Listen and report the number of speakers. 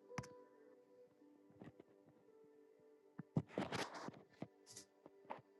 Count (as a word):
zero